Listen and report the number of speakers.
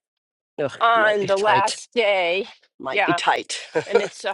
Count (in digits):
2